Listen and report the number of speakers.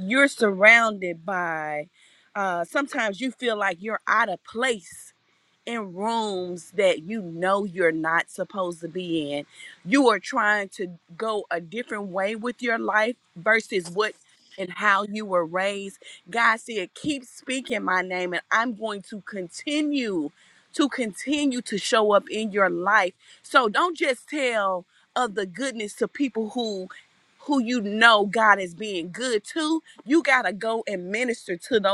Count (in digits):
1